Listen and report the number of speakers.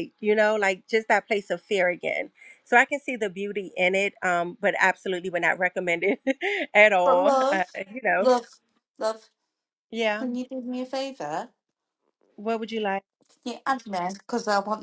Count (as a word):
two